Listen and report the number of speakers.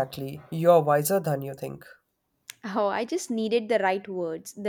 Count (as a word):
two